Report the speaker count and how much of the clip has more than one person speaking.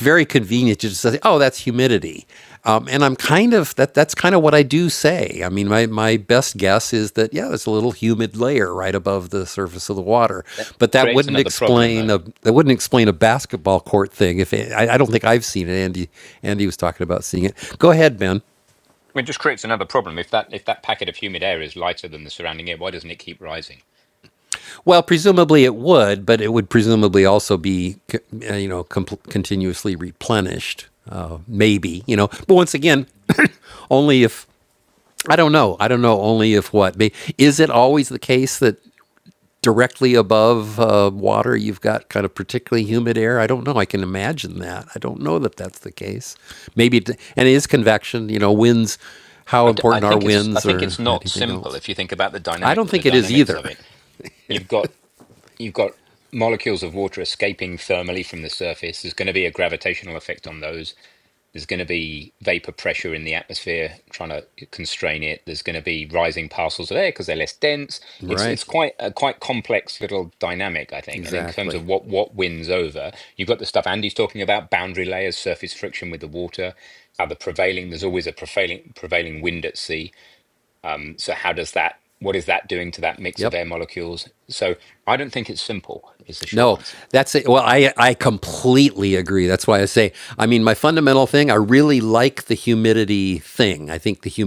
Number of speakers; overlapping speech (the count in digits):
2, about 6%